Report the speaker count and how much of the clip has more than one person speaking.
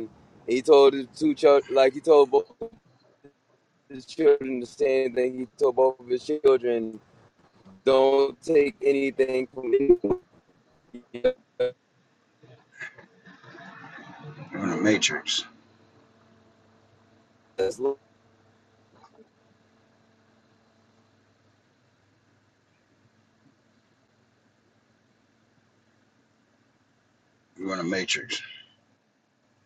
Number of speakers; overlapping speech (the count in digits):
2, no overlap